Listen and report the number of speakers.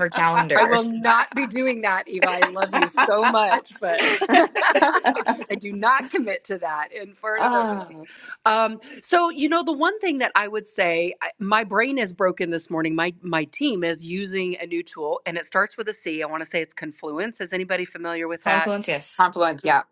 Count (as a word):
three